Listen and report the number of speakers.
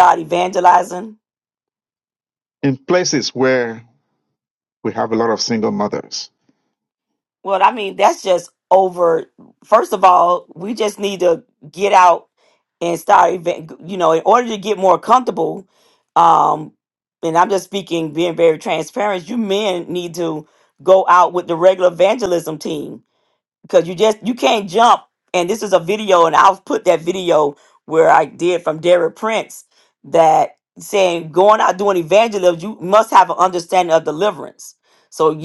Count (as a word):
two